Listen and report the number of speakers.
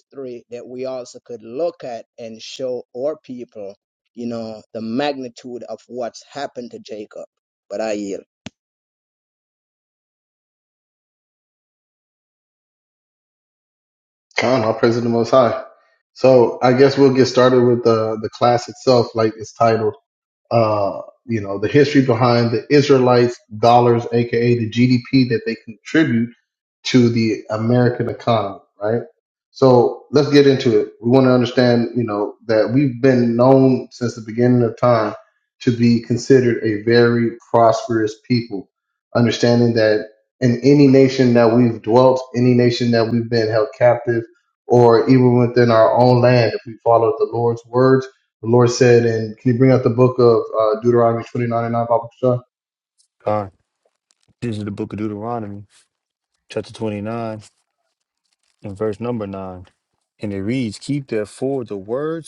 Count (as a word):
three